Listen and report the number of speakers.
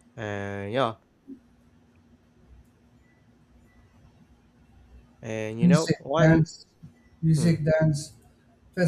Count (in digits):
2